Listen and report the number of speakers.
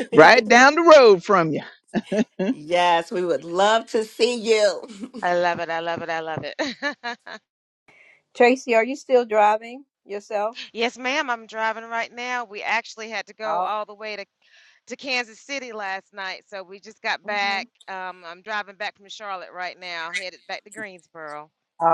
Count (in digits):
4